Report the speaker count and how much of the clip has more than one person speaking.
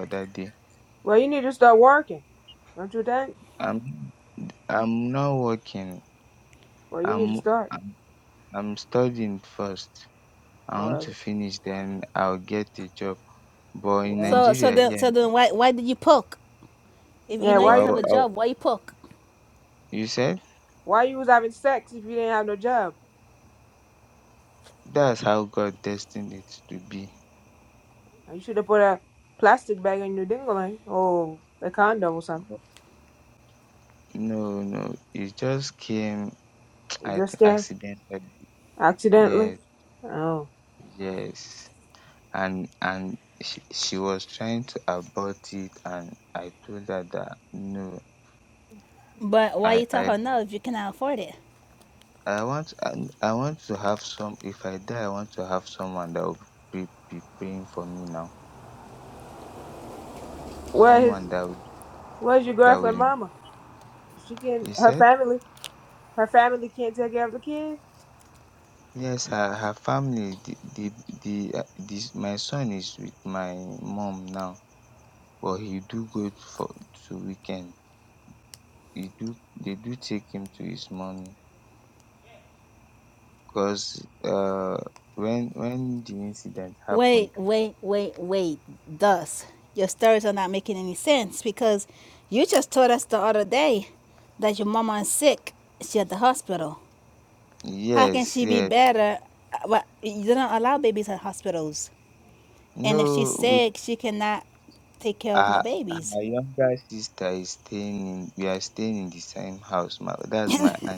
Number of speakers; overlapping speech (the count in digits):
3, about 7%